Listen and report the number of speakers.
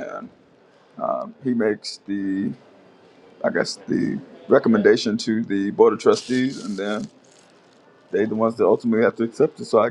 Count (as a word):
one